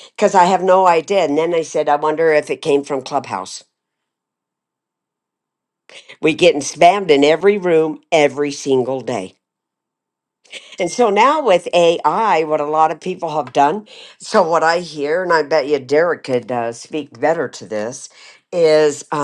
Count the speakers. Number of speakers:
1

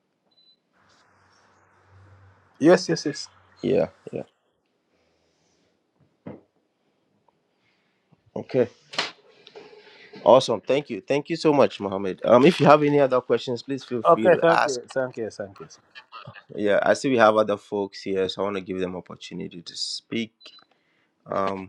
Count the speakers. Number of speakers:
2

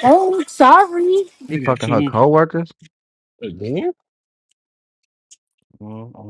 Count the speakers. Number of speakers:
3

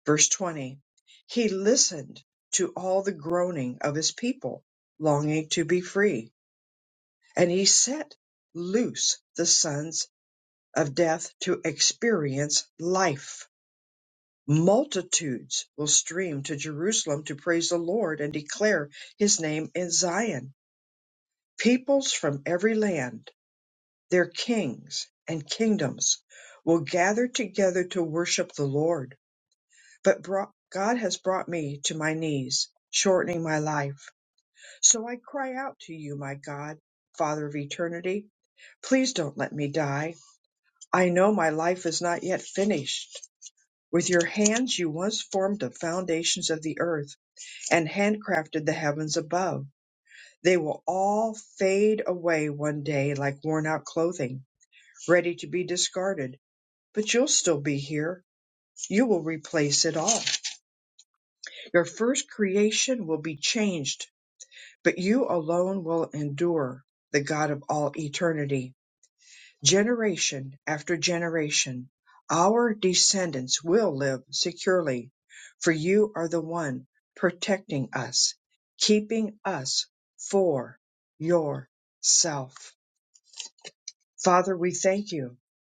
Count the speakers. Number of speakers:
1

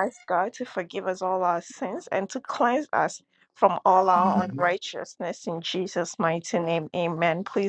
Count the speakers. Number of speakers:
1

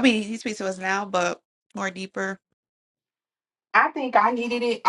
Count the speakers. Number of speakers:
2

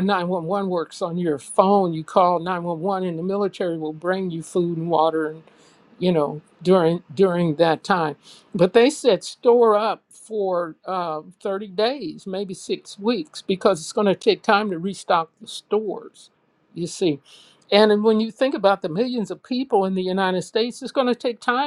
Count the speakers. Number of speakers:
1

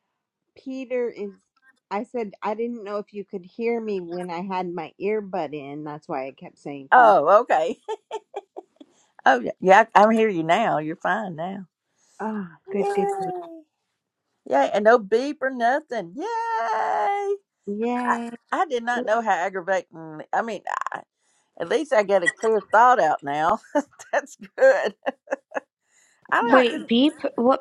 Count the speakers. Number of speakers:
3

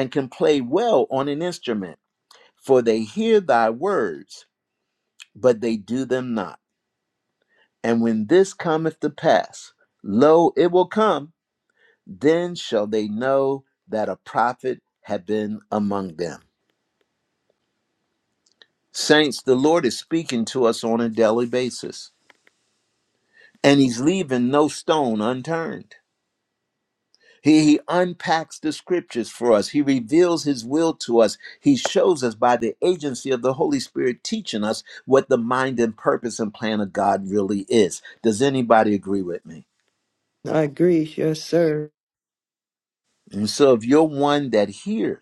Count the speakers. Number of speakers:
2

